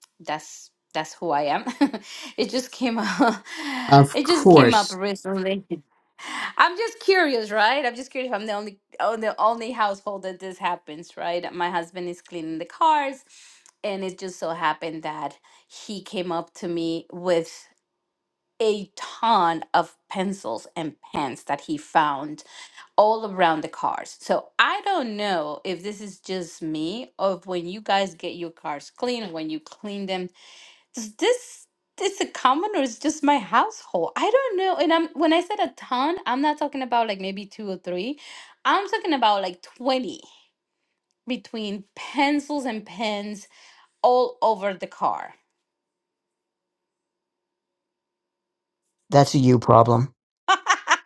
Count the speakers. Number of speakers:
two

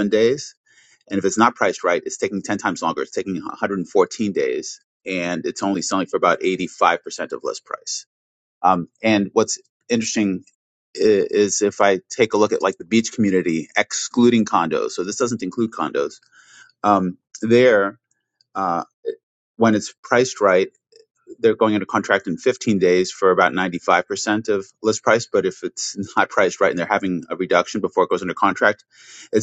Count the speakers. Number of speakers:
one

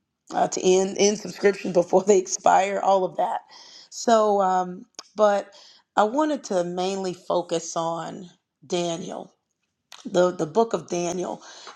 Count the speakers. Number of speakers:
one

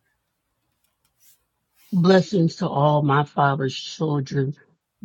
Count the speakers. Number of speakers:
one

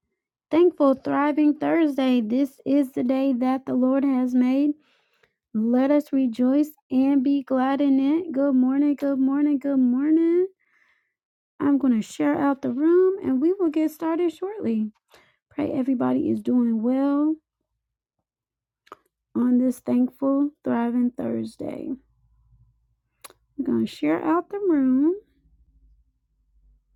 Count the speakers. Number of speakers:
one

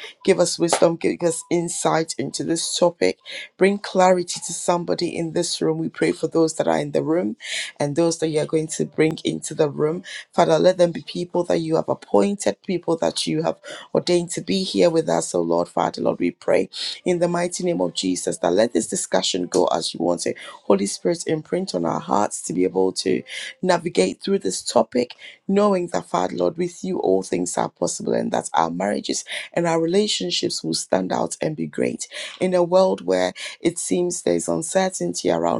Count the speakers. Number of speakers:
one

